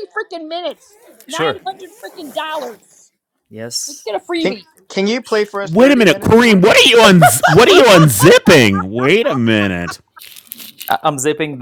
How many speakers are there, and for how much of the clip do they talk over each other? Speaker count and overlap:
4, about 13%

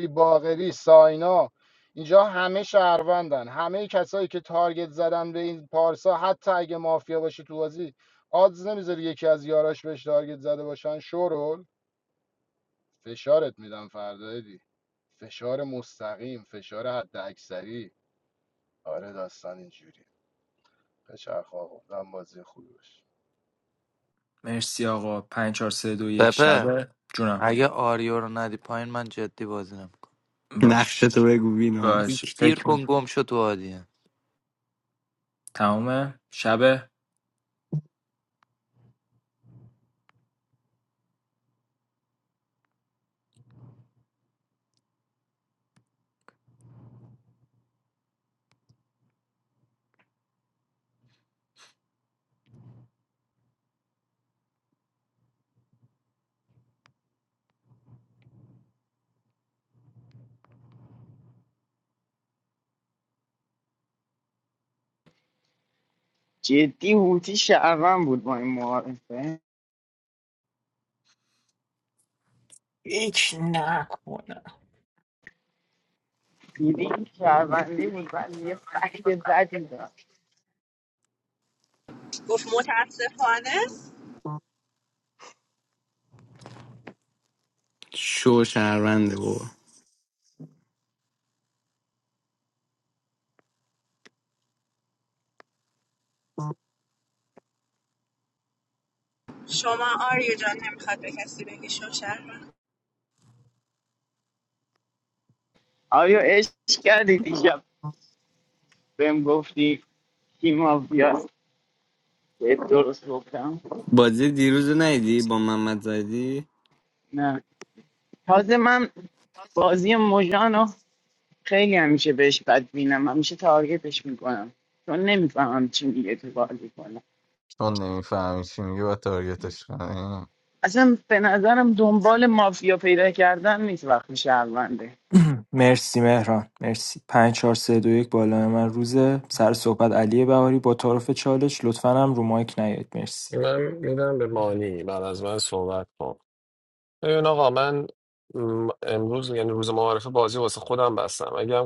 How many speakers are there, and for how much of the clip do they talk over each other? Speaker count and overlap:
9, about 1%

